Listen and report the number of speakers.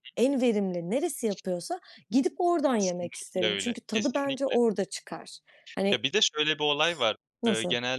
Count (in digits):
2